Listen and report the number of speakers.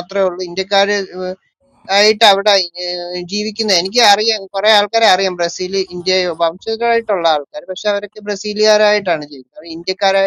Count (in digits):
1